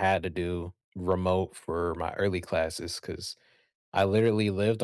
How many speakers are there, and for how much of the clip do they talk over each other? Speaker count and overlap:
one, no overlap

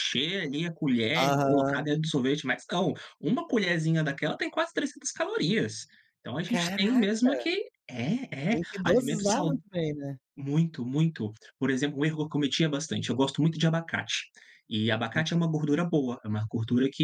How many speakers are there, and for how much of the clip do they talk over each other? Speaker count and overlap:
two, about 17%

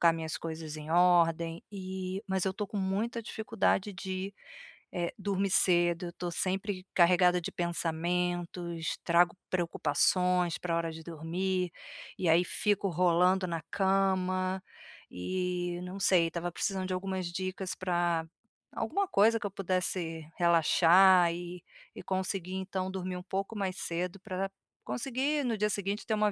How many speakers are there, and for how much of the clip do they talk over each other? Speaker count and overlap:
one, no overlap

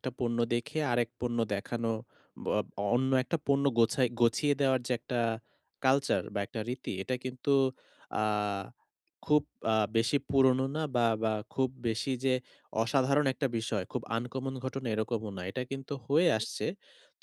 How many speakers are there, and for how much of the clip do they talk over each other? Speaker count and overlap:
one, no overlap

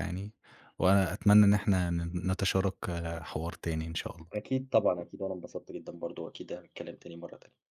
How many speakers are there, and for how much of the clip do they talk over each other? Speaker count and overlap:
two, no overlap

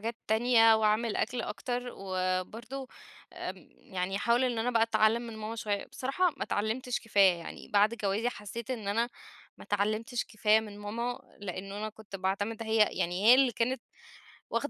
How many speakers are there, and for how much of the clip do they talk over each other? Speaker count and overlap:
one, no overlap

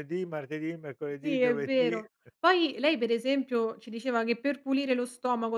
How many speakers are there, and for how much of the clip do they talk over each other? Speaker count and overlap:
two, about 15%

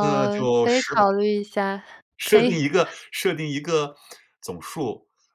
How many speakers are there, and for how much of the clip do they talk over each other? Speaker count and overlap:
two, about 27%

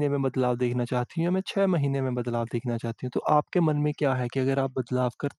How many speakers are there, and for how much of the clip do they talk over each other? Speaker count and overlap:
one, no overlap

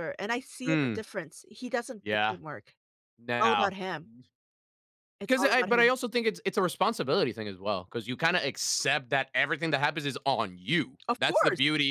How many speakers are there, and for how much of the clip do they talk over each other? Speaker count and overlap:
two, about 16%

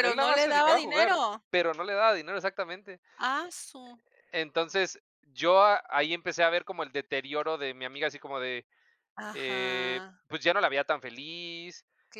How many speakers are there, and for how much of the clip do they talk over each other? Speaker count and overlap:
two, about 15%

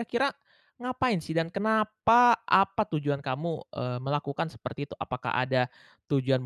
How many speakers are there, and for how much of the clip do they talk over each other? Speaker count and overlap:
one, no overlap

